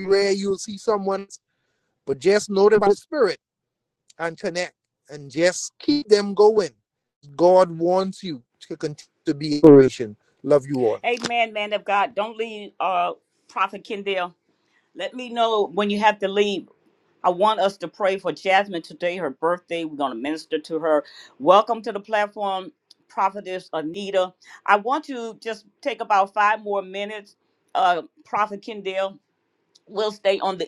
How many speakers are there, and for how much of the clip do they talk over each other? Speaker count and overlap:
2, no overlap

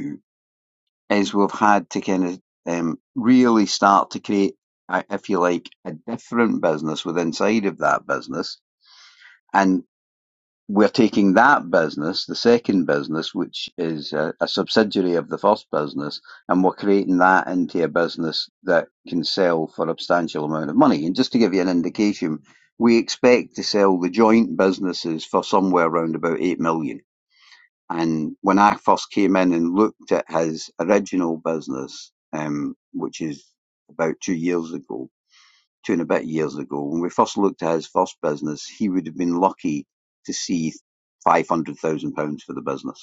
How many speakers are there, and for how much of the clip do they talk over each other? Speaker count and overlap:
1, no overlap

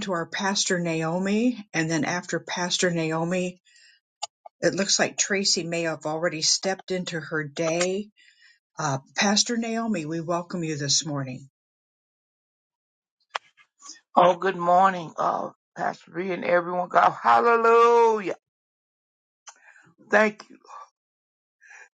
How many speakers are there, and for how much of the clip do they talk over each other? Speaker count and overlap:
2, no overlap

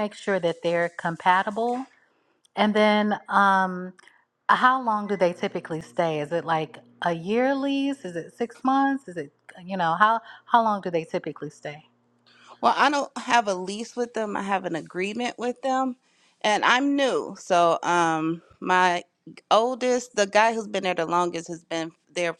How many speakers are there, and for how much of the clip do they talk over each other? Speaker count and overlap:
2, no overlap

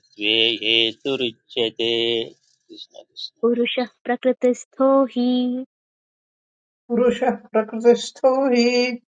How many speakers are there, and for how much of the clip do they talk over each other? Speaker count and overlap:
3, no overlap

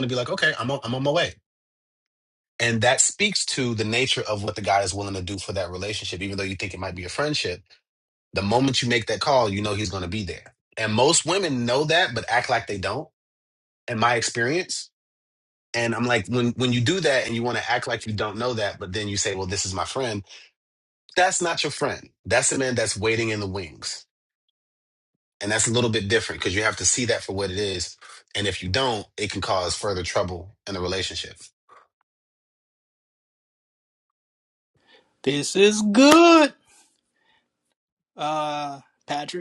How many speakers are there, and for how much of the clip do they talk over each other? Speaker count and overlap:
2, no overlap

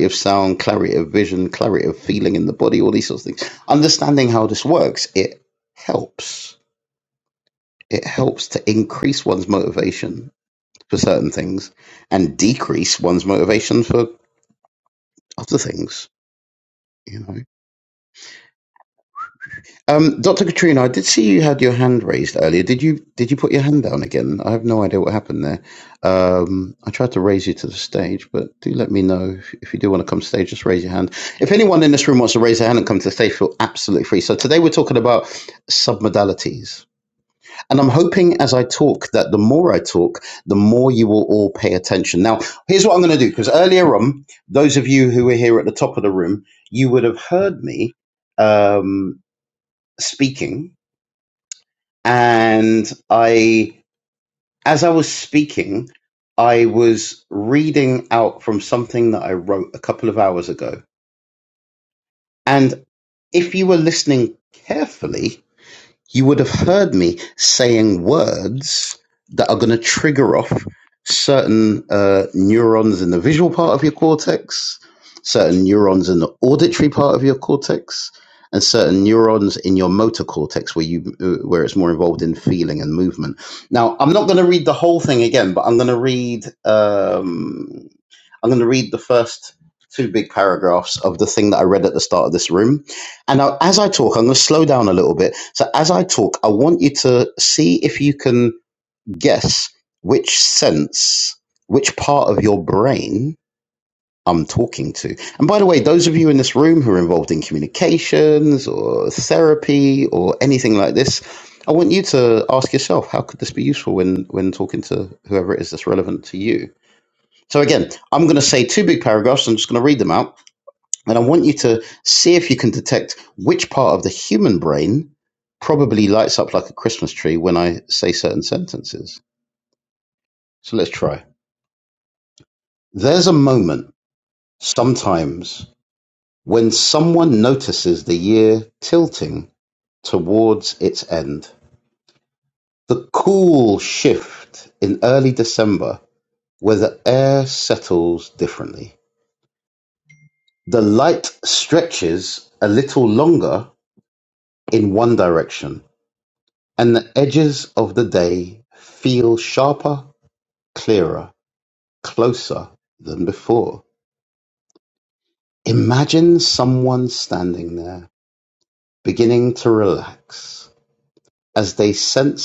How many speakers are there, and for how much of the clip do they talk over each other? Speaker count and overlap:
1, no overlap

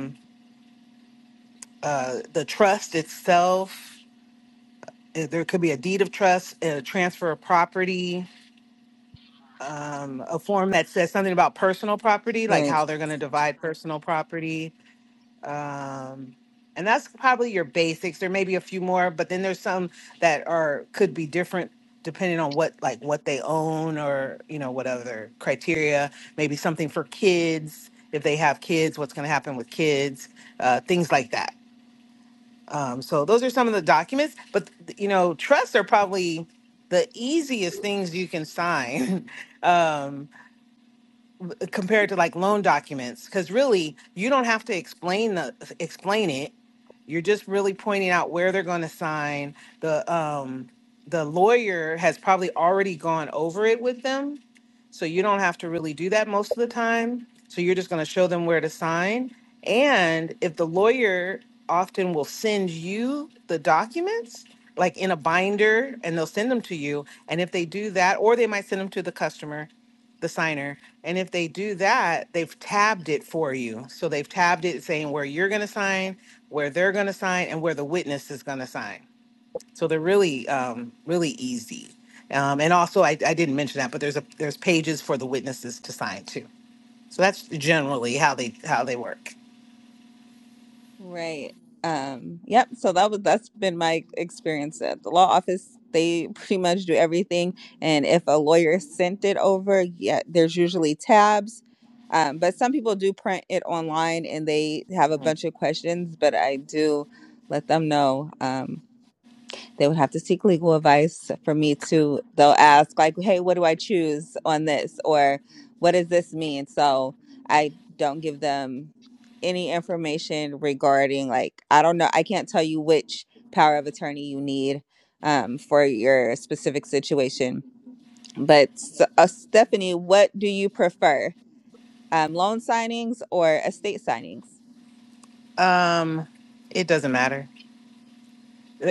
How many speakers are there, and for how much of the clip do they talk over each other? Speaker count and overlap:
2, under 1%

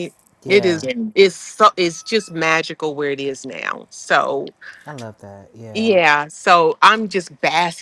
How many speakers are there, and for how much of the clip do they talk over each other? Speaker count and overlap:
2, about 8%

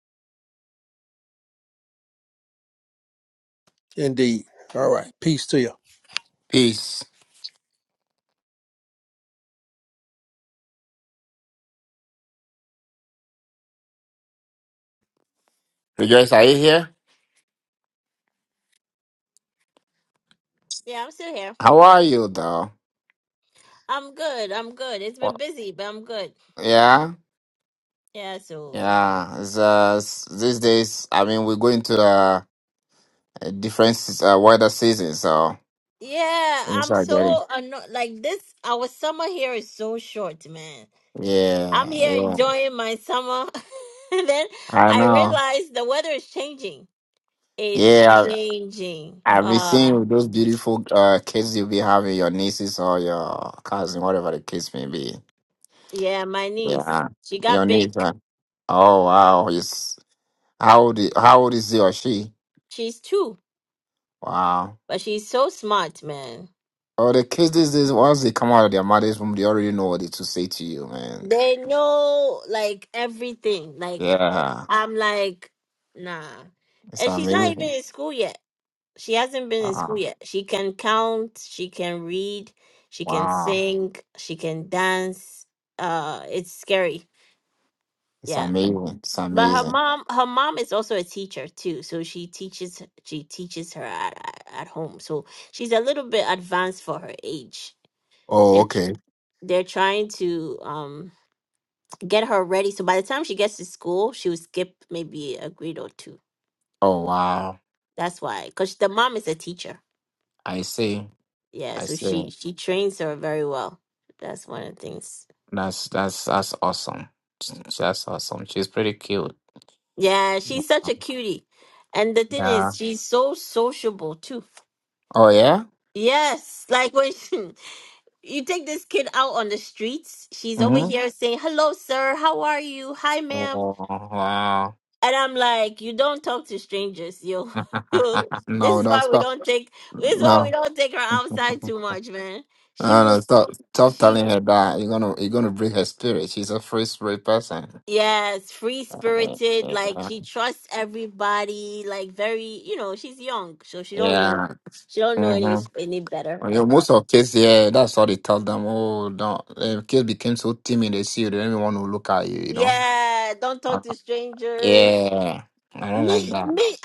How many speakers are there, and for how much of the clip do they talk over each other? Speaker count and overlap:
3, about 8%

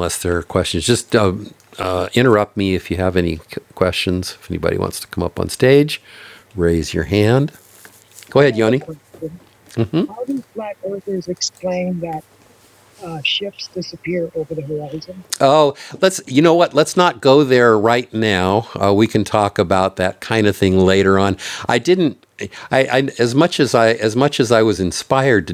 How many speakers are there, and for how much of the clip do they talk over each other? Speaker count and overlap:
2, about 2%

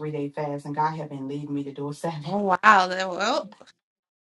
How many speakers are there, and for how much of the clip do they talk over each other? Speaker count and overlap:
2, about 1%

